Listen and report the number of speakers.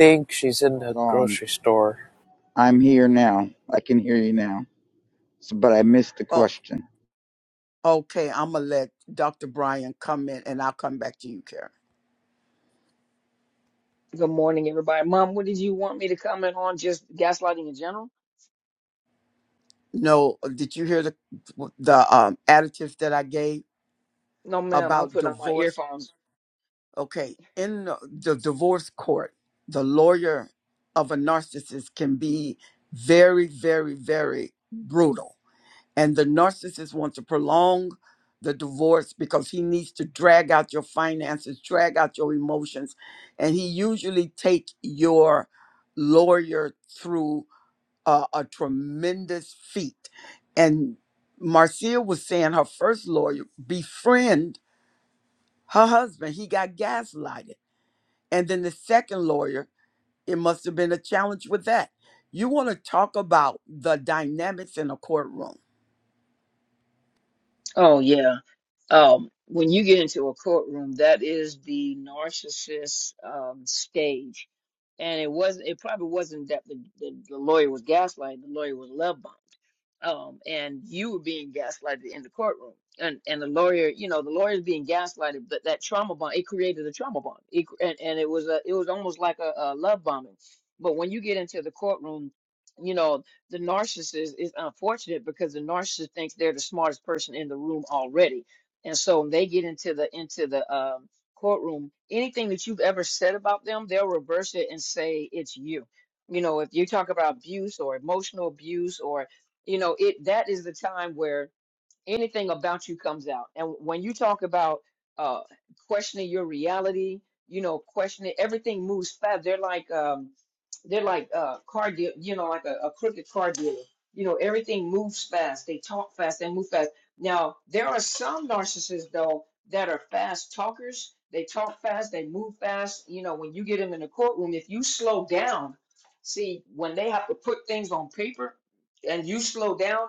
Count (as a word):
four